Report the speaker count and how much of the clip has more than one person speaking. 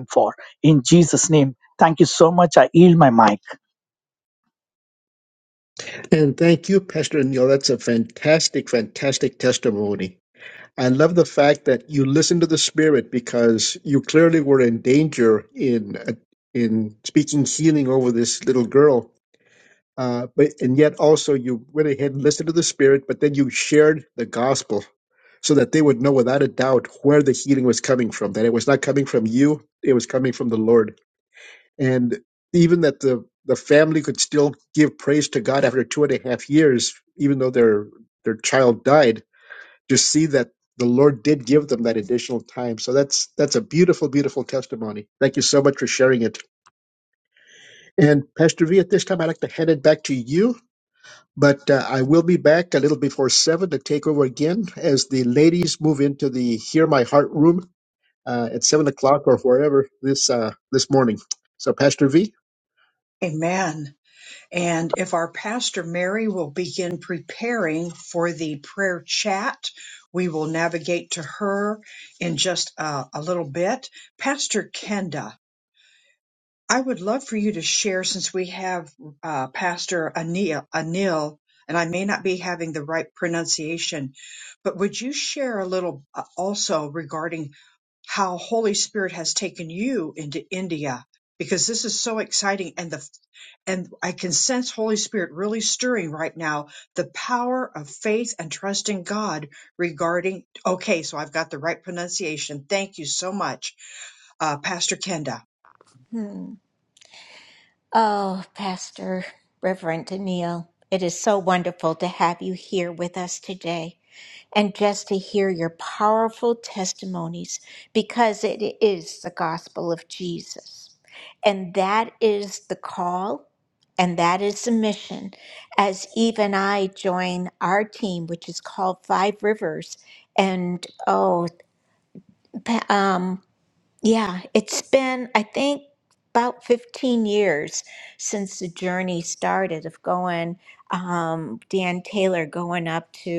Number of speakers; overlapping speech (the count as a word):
four, no overlap